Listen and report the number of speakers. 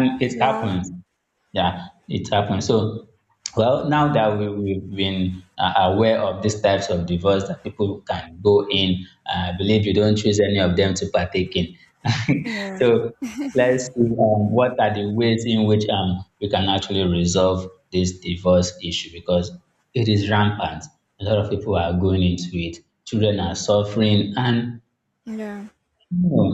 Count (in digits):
2